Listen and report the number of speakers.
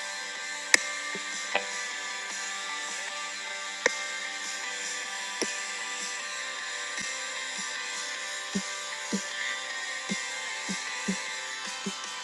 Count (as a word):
zero